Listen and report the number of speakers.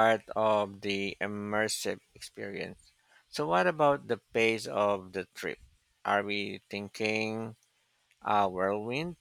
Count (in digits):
1